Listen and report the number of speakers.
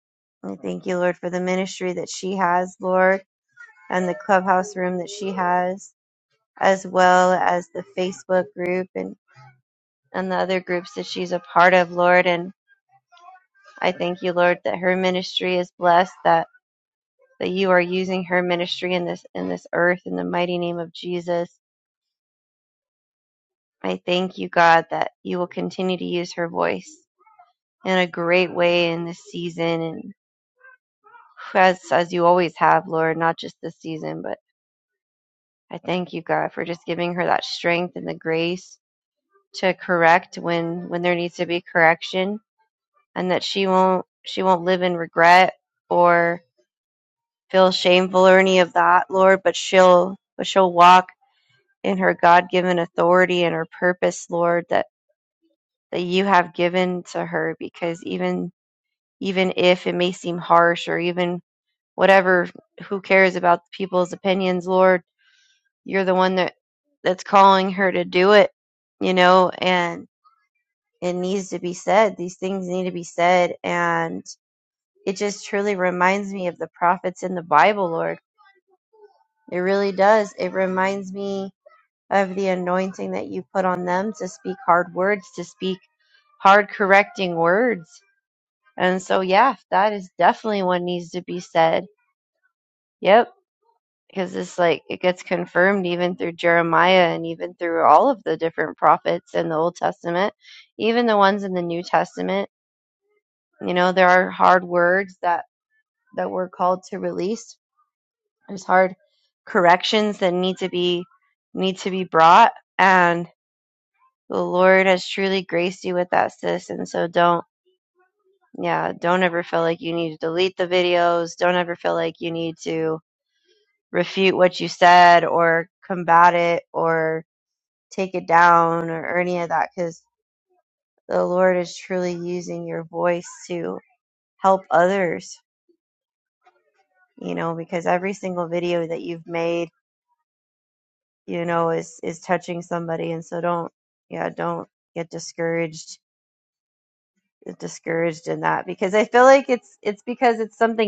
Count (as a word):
one